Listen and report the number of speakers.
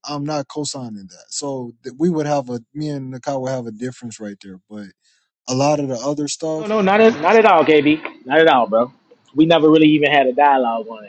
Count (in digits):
2